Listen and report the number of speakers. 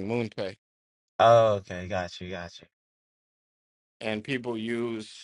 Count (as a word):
two